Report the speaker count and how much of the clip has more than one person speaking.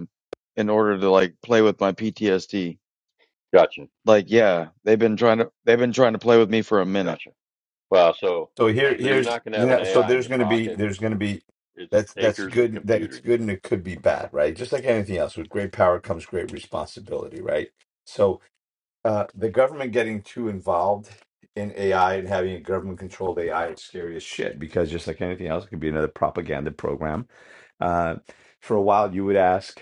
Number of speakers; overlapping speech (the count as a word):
three, about 11%